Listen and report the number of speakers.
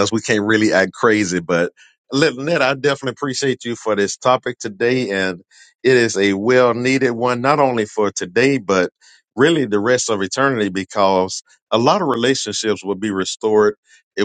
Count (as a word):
one